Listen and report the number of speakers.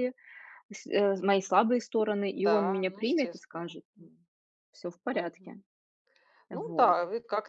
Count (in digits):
2